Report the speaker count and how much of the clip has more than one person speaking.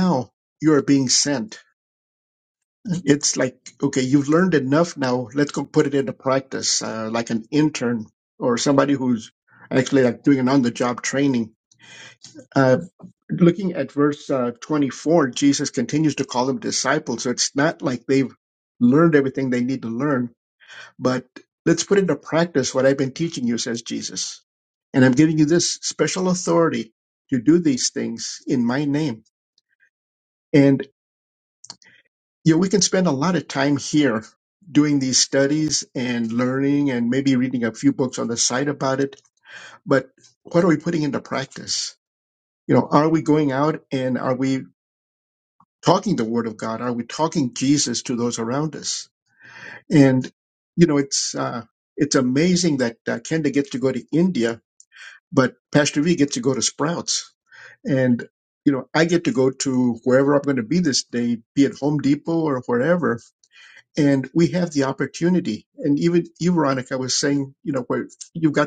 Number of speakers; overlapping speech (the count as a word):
one, no overlap